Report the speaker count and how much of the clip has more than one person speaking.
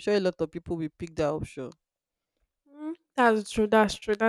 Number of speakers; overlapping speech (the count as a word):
two, no overlap